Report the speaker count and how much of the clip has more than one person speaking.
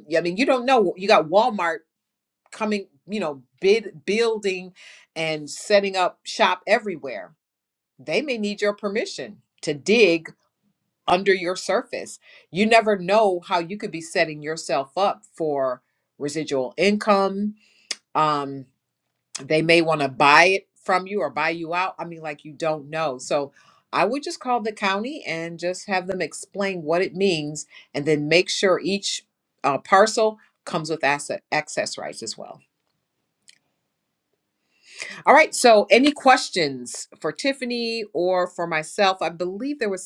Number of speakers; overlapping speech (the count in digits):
1, no overlap